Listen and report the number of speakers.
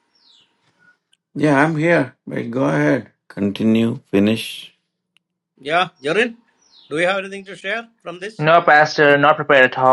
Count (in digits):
3